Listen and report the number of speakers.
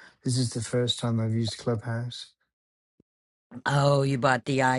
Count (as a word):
two